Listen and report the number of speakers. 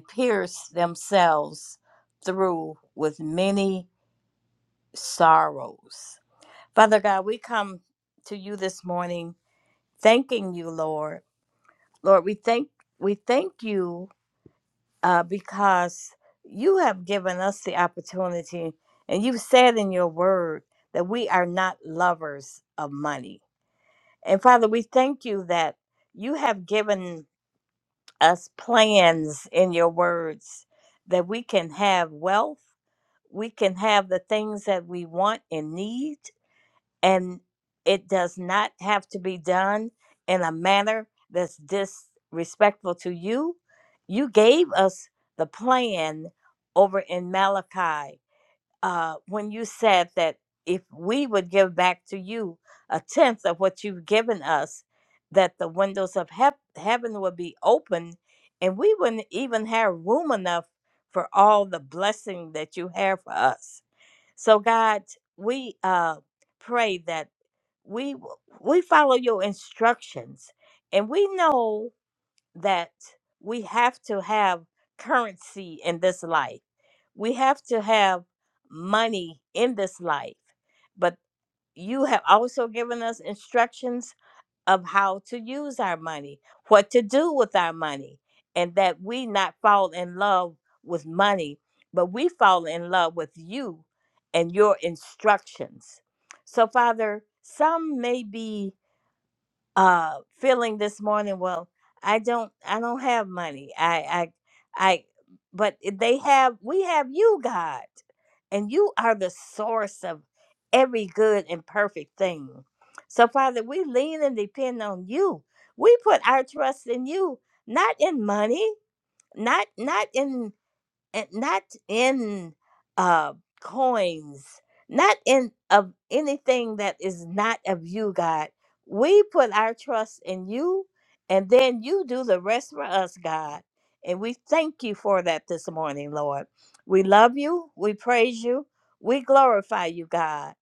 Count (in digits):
1